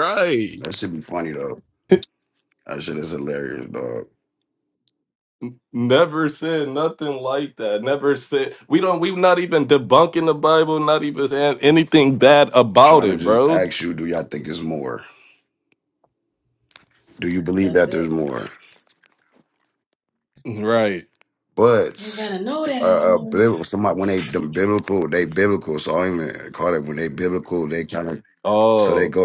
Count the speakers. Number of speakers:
three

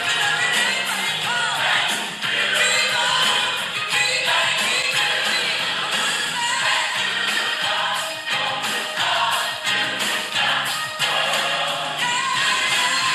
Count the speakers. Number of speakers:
zero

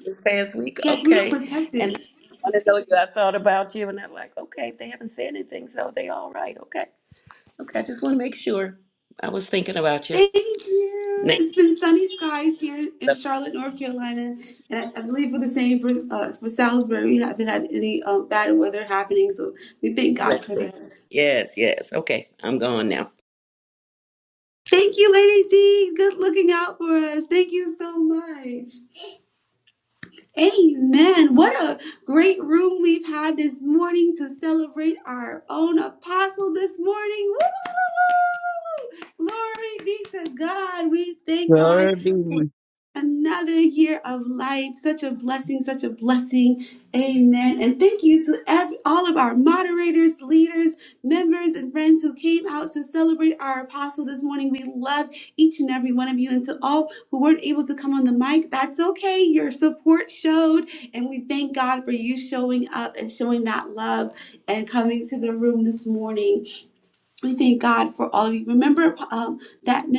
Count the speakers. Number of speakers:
three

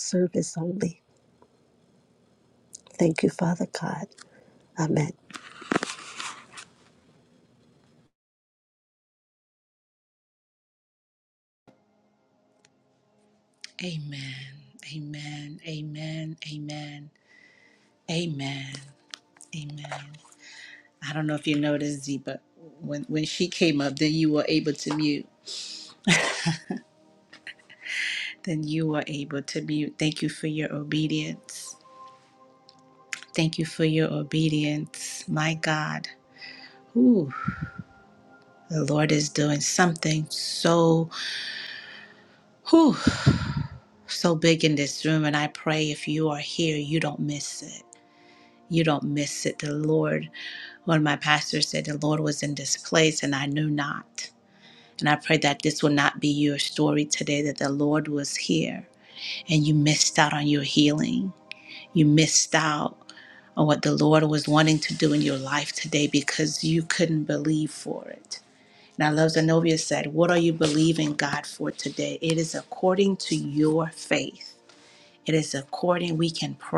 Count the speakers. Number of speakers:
two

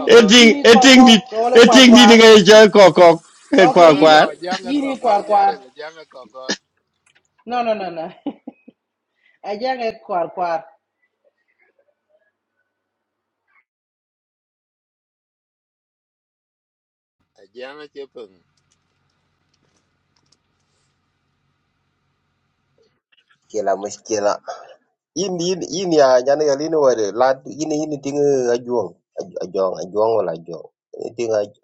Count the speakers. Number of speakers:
four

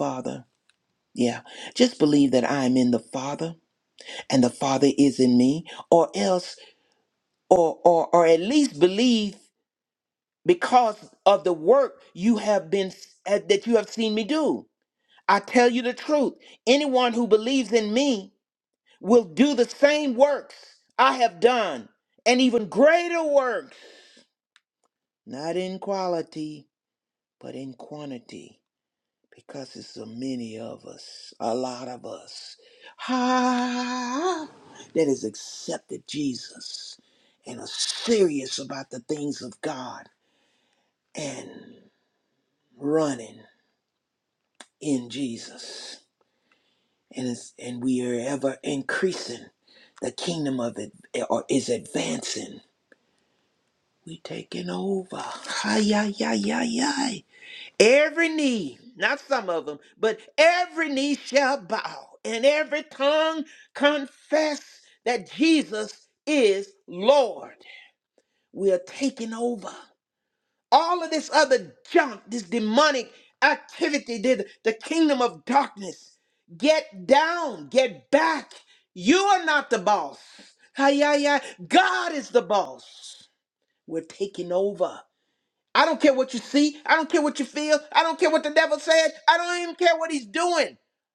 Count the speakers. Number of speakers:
one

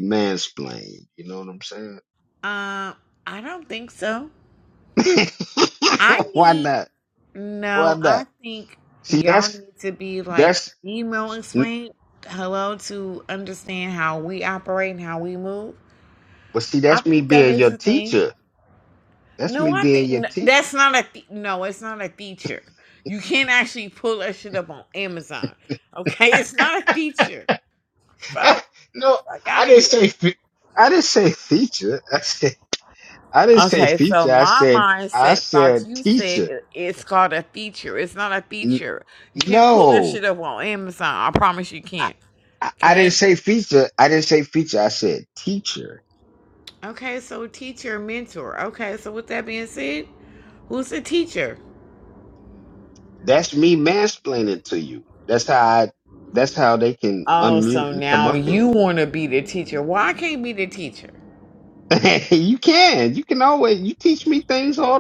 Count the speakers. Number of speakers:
two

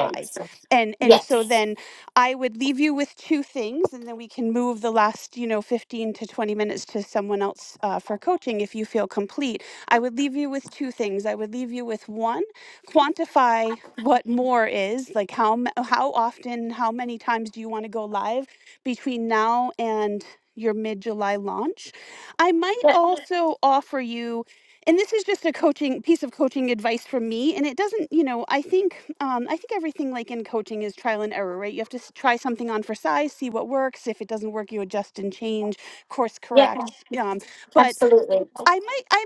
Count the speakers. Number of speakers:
two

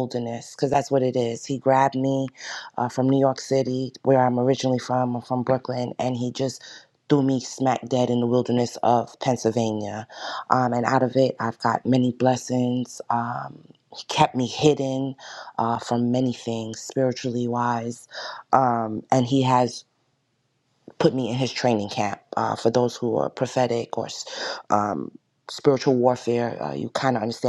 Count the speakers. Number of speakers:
one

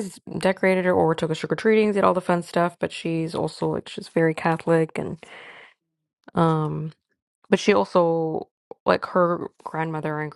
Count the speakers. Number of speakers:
one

